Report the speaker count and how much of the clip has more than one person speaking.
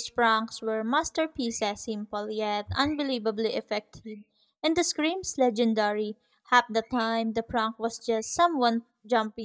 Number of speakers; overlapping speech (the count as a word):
one, no overlap